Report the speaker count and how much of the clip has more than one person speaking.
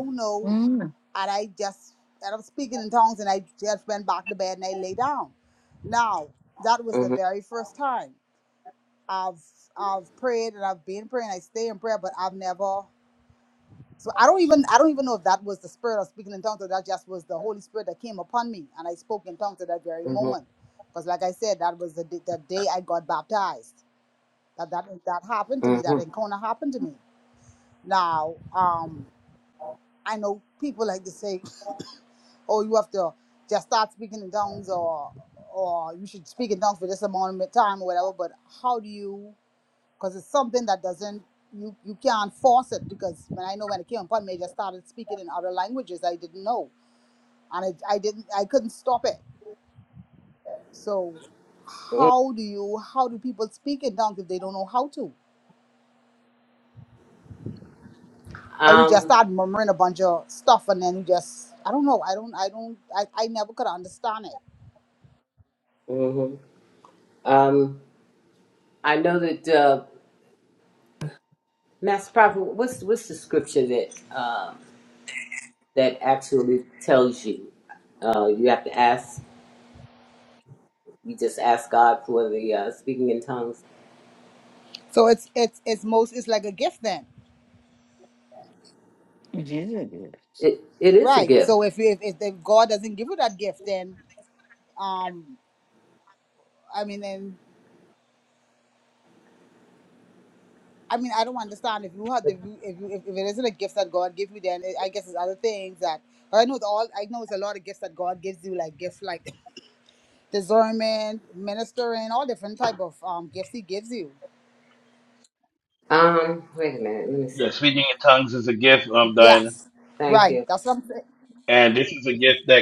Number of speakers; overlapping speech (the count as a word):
four, about 3%